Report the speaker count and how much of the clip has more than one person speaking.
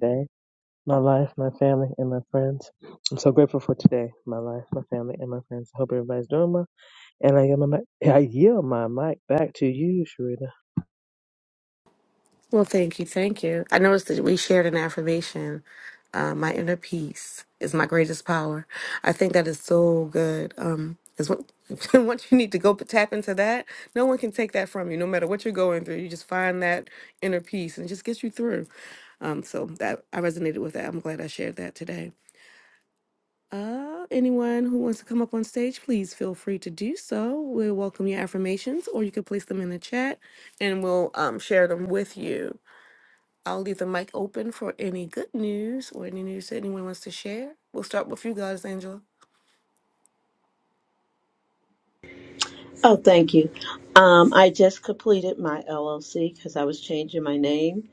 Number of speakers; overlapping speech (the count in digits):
3, no overlap